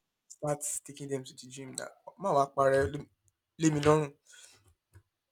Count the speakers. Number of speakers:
1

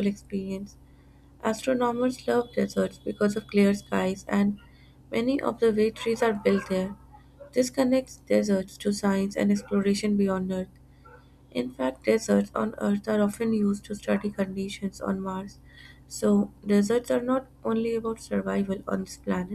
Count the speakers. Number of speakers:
1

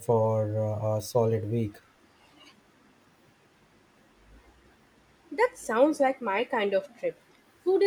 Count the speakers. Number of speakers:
2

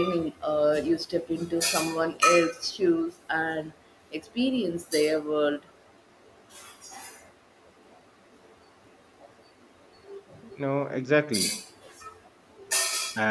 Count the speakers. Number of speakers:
2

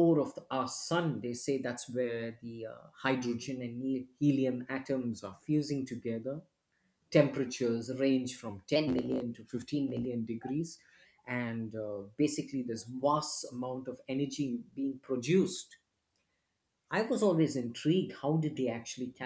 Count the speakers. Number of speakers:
1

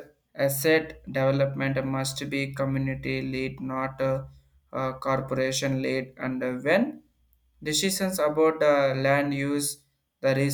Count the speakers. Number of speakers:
1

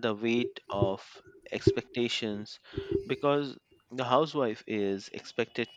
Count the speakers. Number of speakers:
1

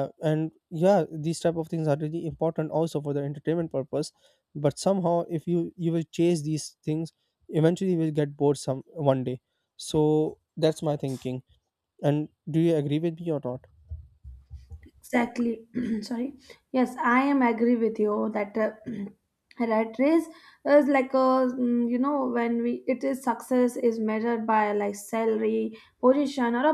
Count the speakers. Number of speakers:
2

